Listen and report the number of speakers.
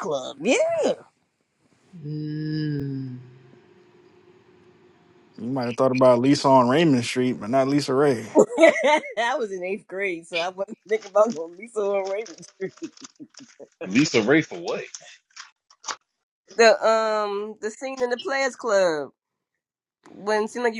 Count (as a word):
four